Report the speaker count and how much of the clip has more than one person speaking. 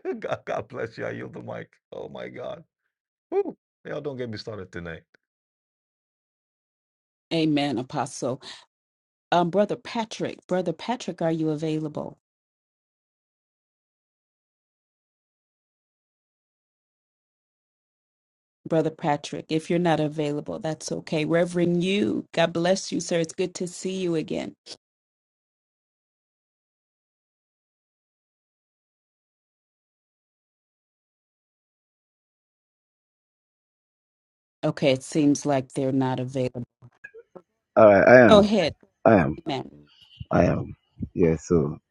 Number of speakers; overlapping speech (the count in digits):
3, under 1%